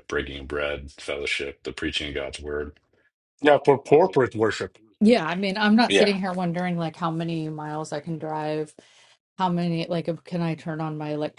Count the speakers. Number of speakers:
3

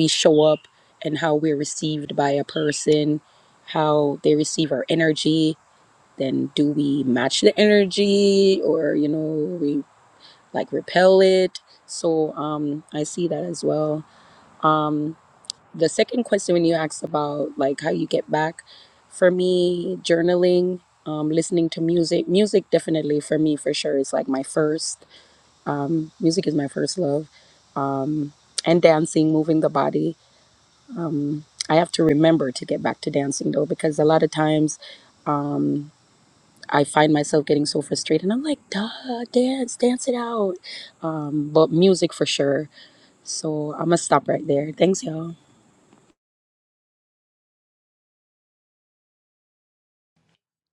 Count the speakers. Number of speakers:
1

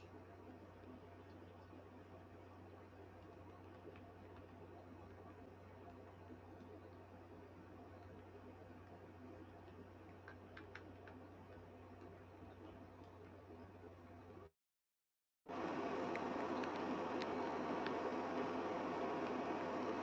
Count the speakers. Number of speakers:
0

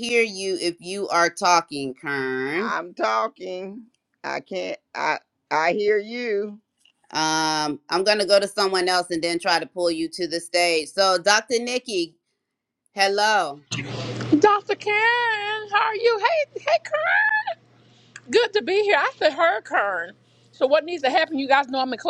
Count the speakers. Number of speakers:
3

